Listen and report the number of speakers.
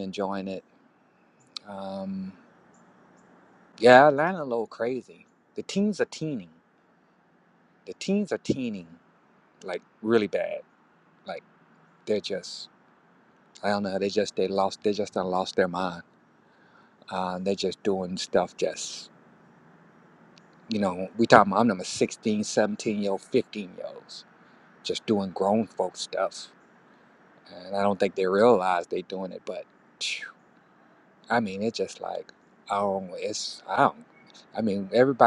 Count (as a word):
one